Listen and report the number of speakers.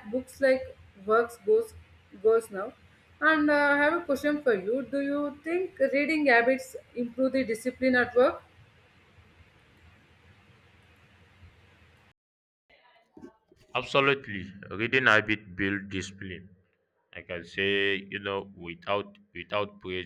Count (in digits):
2